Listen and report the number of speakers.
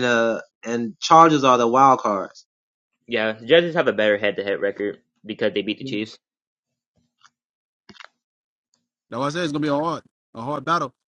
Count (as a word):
three